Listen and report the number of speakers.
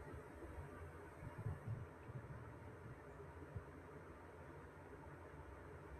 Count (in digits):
0